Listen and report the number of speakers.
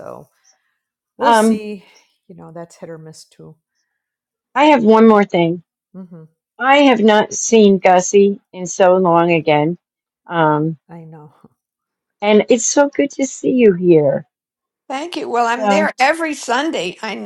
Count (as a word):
three